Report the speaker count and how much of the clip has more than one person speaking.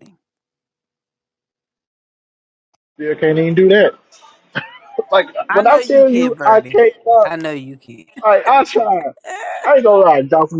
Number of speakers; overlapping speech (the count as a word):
two, about 14%